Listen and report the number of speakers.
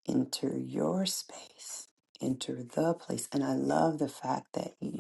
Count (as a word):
one